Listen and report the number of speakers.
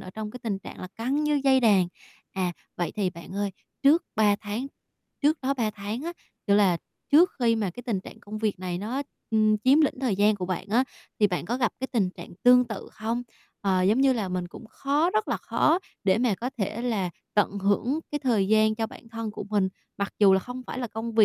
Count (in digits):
1